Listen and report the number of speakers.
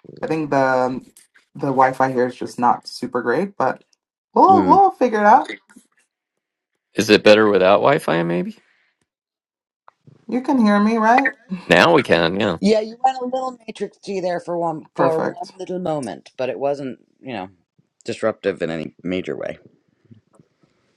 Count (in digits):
3